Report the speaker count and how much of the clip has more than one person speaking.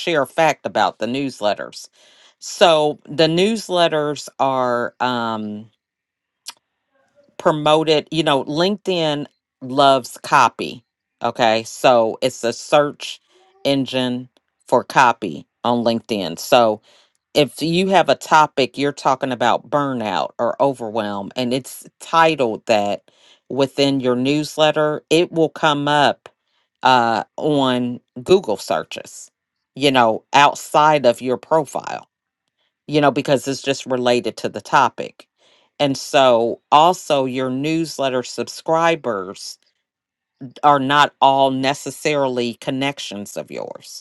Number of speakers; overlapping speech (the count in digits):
1, no overlap